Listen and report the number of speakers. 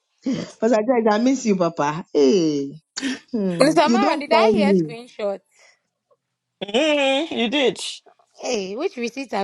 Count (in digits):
3